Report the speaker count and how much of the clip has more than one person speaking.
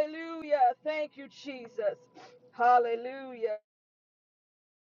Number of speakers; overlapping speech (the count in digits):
1, no overlap